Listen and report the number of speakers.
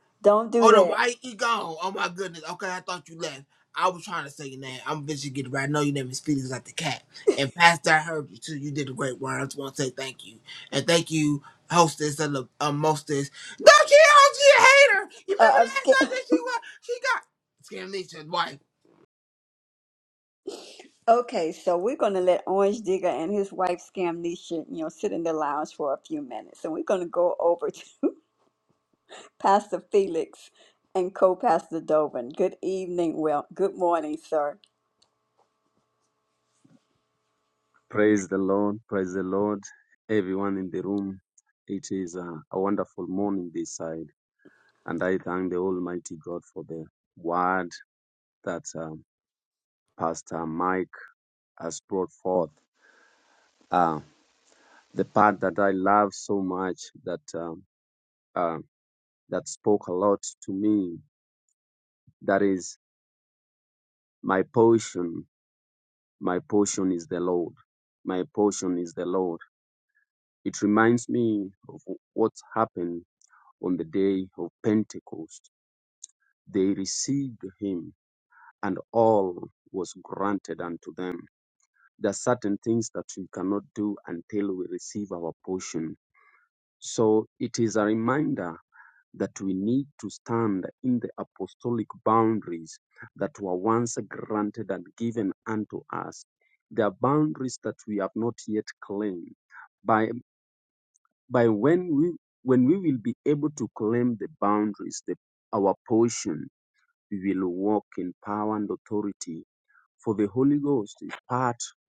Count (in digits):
3